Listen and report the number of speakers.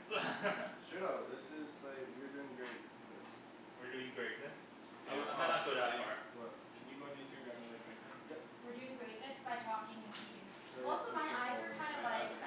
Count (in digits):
4